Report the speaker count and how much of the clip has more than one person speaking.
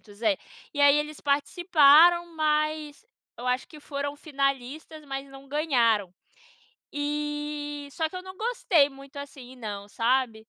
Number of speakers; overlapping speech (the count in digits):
1, no overlap